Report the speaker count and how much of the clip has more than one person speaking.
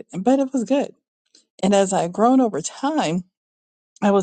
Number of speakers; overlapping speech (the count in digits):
1, no overlap